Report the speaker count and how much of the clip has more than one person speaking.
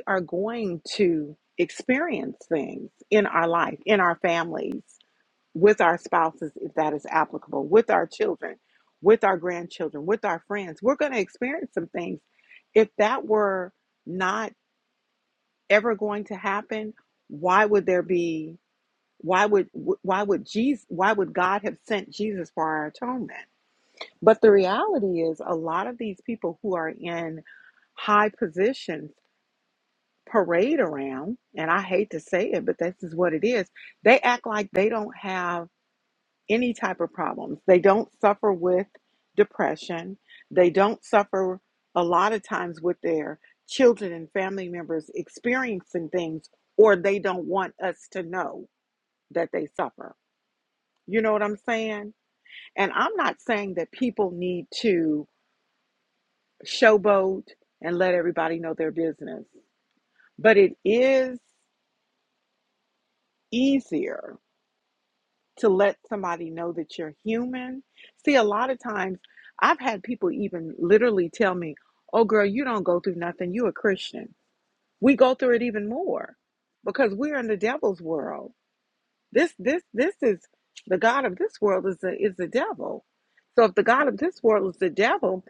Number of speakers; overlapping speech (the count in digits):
1, no overlap